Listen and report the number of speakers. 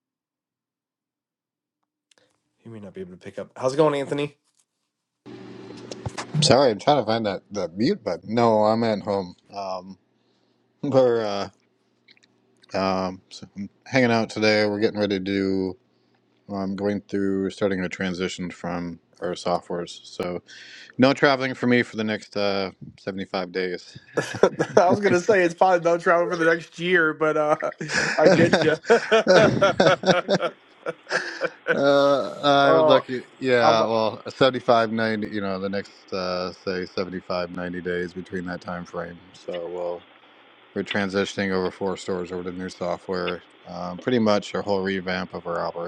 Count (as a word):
two